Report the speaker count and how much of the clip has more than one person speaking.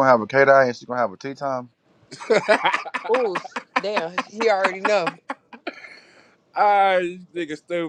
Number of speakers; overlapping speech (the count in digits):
3, no overlap